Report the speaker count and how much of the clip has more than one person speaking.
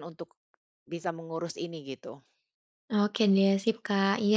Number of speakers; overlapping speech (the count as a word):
two, no overlap